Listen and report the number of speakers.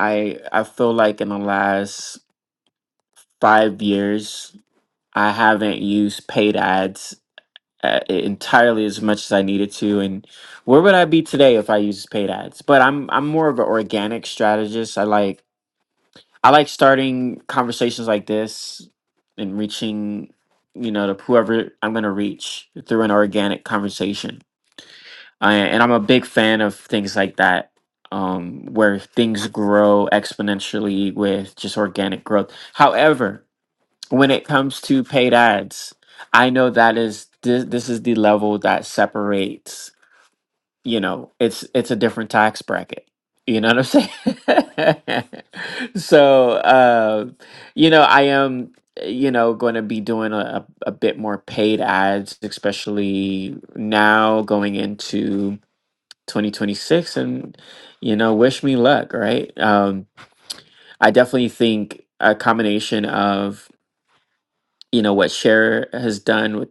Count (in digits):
1